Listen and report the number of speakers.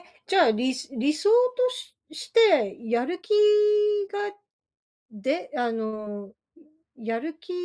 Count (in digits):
1